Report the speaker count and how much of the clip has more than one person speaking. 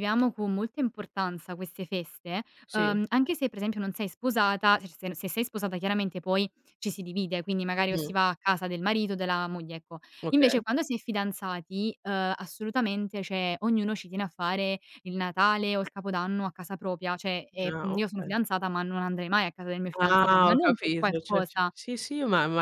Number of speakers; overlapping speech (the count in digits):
2, about 14%